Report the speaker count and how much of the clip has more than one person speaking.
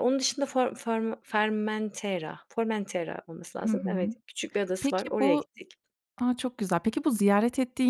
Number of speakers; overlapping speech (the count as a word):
two, about 15%